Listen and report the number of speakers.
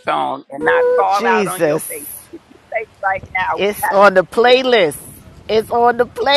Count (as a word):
two